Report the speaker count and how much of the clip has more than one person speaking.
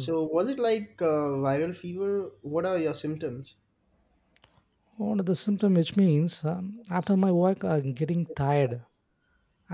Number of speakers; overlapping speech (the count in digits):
2, about 1%